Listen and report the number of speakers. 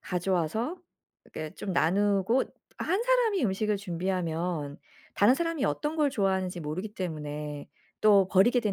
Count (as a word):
one